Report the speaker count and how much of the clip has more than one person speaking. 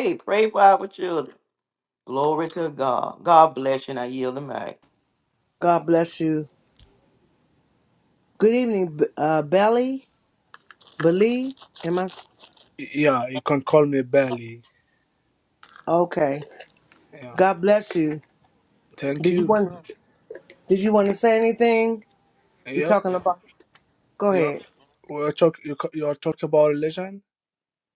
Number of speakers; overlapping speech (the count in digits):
3, about 3%